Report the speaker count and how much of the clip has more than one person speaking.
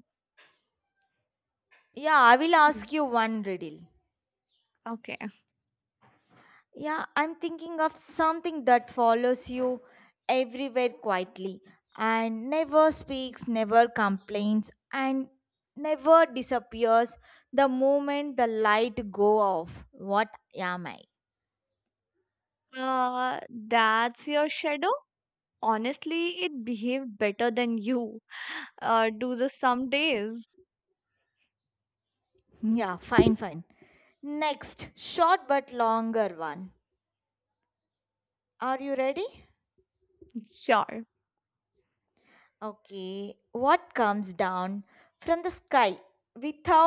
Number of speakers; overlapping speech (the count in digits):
2, no overlap